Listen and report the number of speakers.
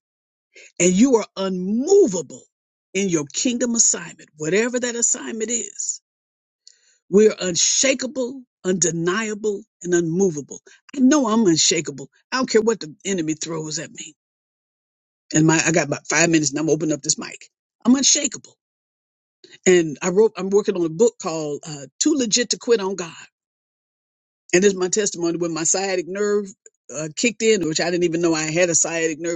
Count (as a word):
one